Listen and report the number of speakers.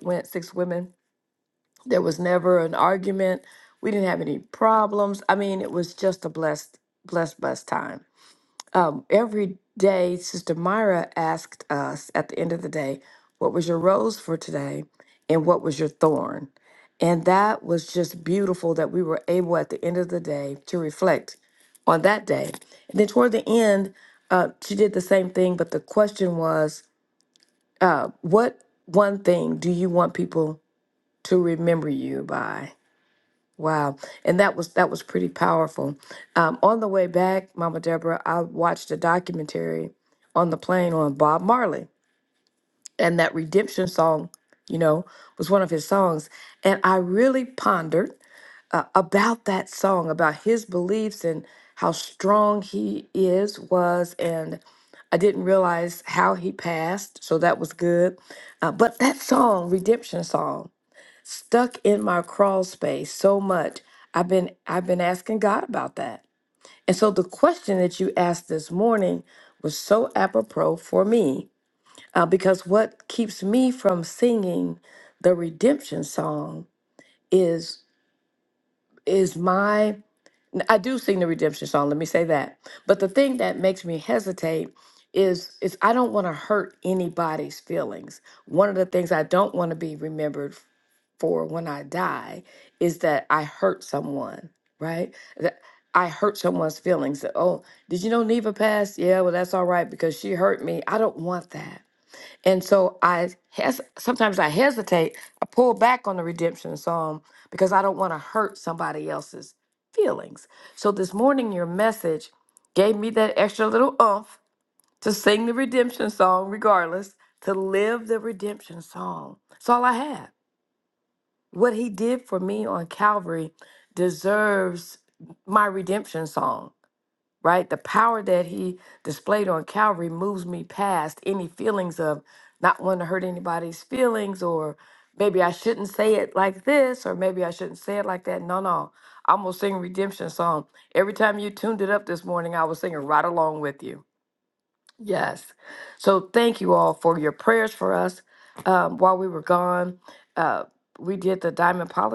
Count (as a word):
one